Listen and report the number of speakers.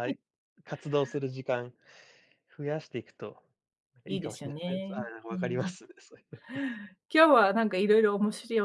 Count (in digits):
2